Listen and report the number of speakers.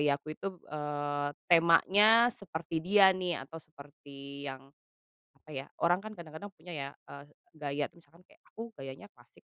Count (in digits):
1